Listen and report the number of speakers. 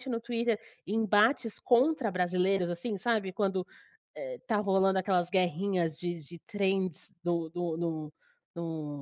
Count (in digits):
1